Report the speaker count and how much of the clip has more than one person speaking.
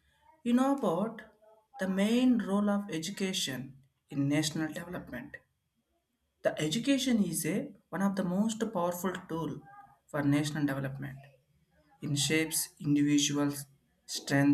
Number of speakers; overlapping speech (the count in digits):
1, no overlap